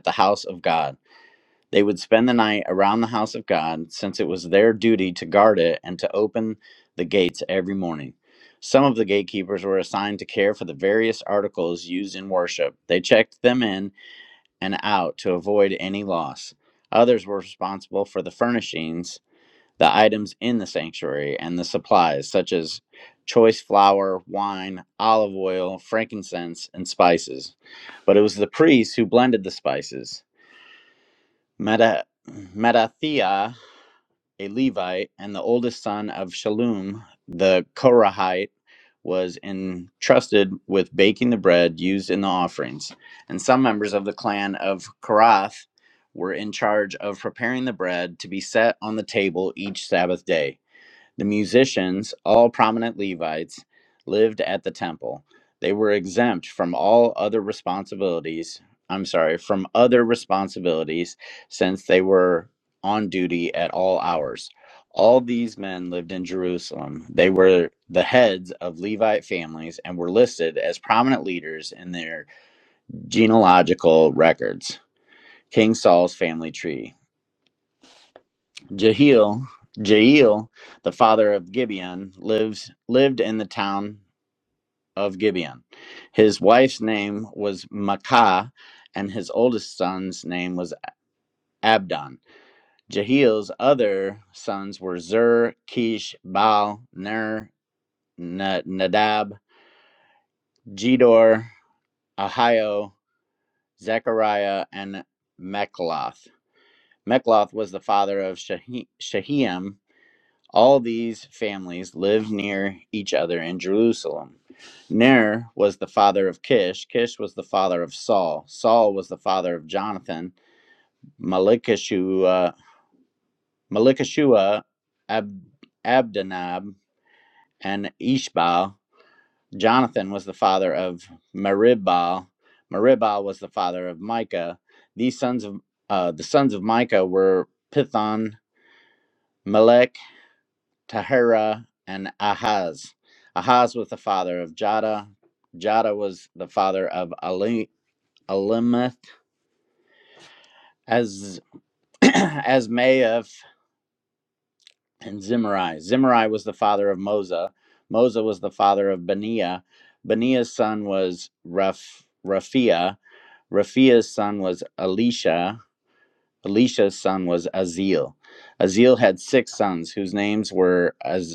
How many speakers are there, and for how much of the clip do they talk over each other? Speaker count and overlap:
1, no overlap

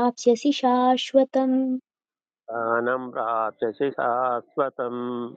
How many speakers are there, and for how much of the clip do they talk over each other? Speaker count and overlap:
2, no overlap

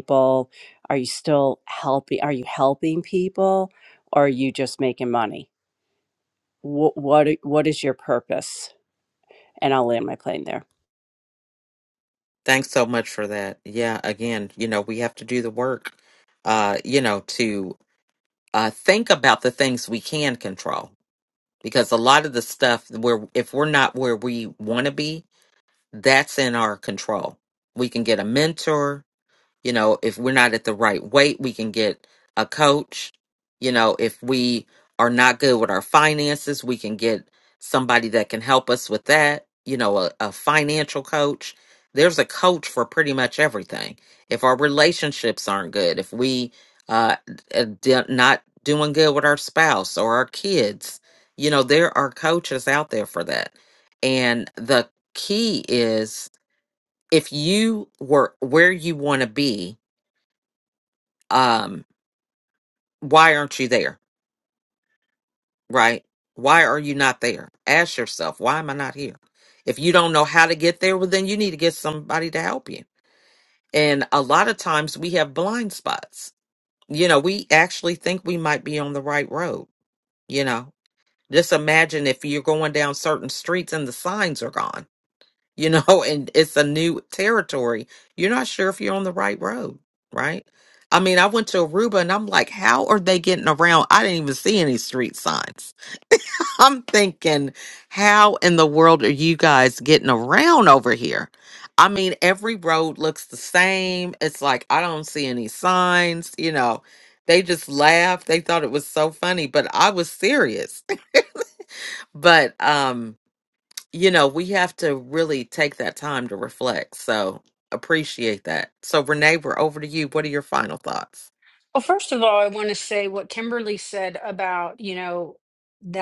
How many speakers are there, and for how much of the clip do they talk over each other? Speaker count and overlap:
3, no overlap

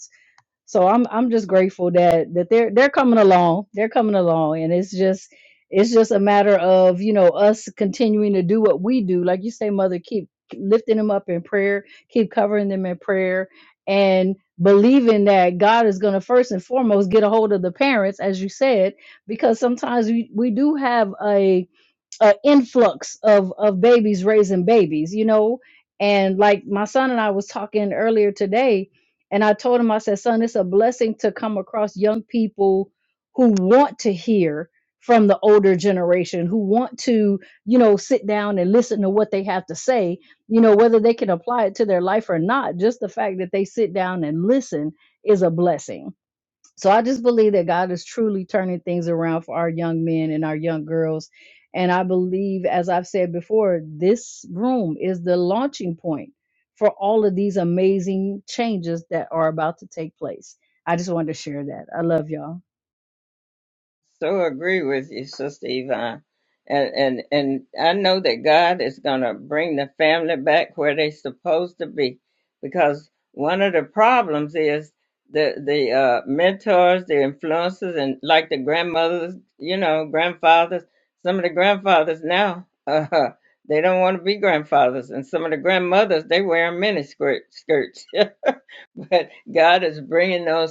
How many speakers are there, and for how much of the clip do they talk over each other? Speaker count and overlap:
2, no overlap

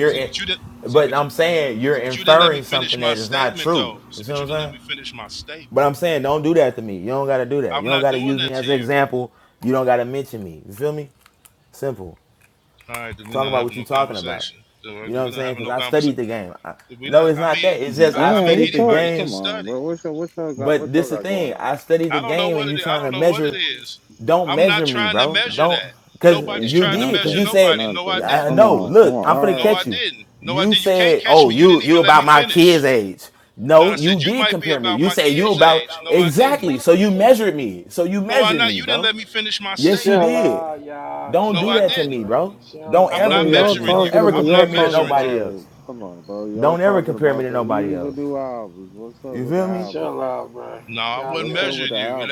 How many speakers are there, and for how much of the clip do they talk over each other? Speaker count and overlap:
4, about 60%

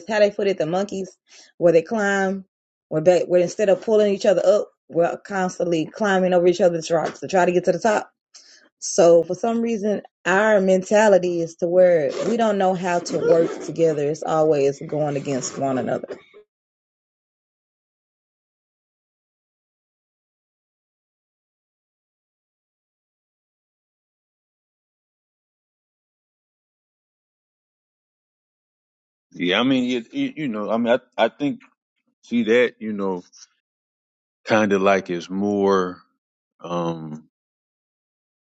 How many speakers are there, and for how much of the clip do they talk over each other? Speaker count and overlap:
2, no overlap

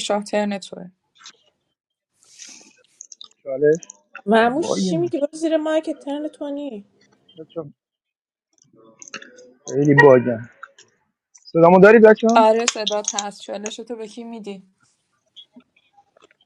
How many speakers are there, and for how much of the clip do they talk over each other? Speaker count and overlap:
3, about 3%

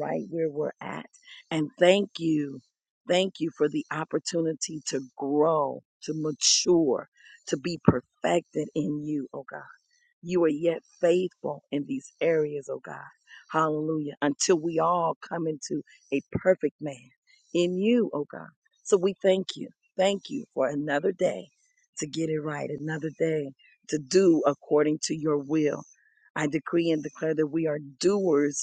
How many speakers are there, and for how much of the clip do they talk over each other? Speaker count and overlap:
1, no overlap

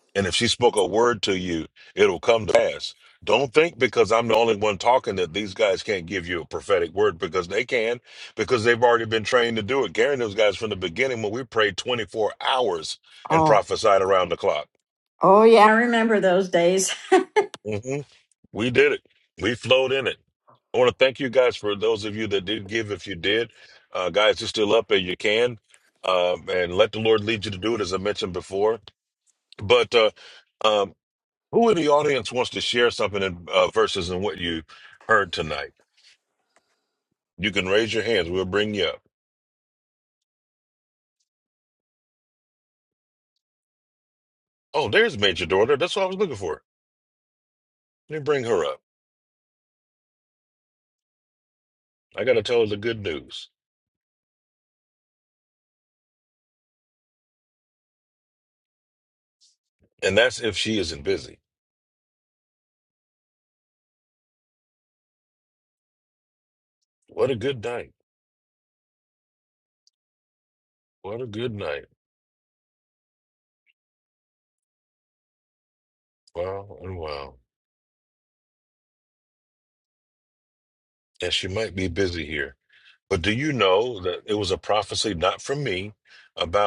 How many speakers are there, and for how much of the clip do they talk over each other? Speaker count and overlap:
2, under 1%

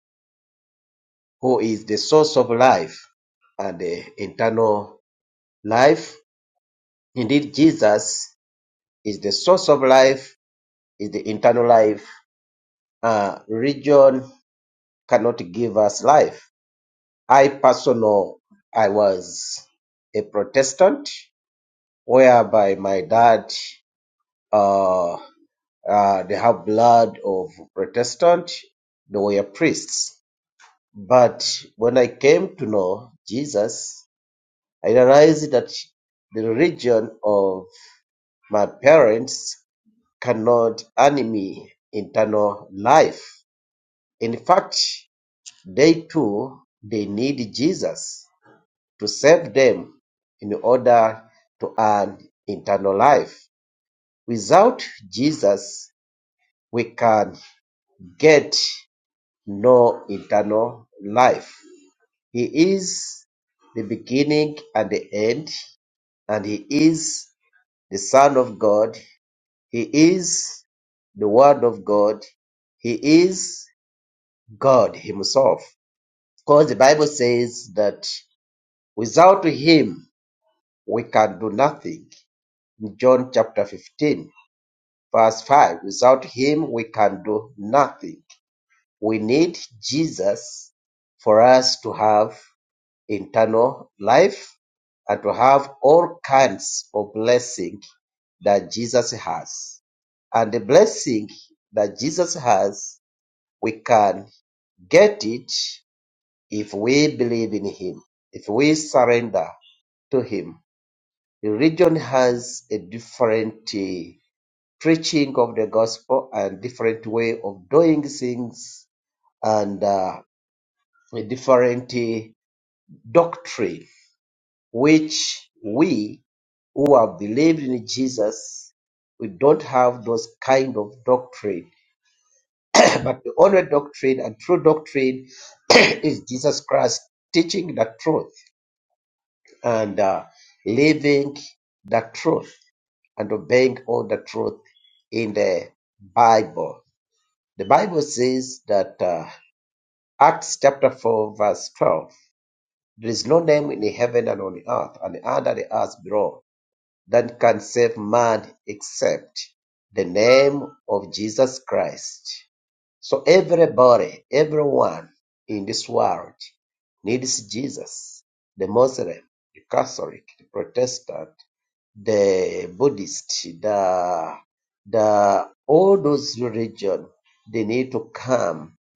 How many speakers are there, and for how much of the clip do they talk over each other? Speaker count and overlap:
1, no overlap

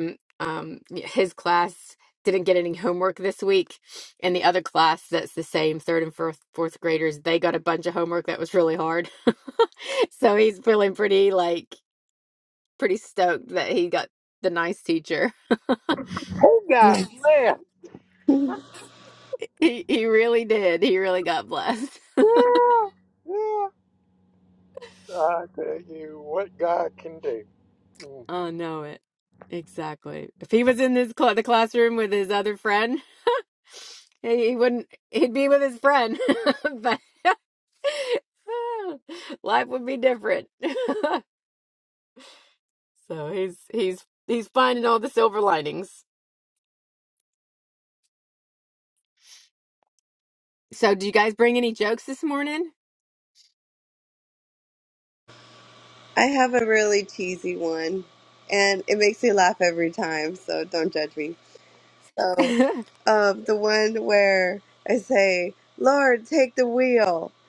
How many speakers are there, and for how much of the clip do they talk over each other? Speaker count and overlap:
3, under 1%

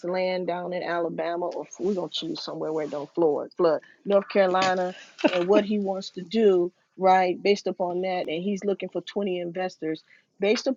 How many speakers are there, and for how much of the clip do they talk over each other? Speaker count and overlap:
1, no overlap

